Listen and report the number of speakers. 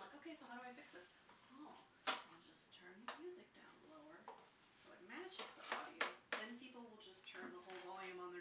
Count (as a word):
one